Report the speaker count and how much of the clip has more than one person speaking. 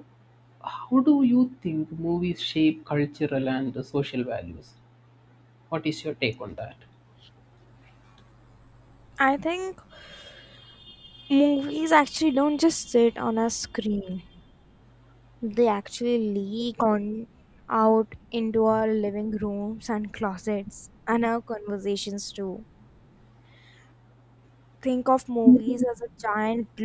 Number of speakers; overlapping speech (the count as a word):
two, no overlap